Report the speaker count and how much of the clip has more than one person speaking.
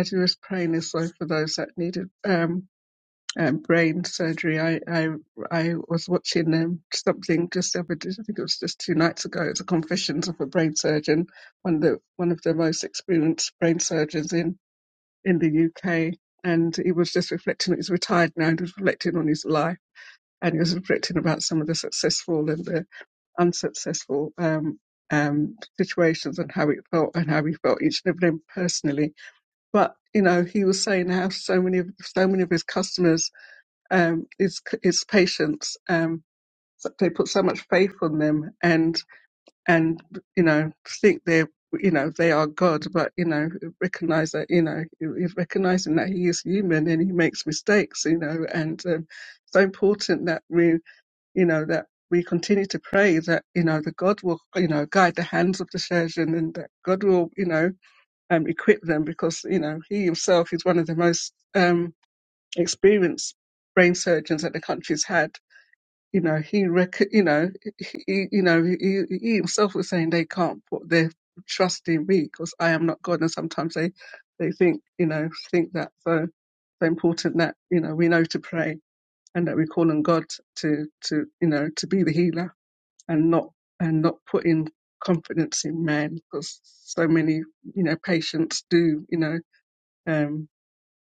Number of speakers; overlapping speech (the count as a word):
one, no overlap